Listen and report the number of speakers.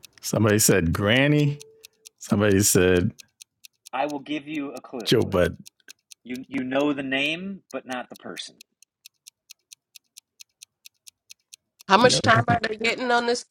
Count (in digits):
3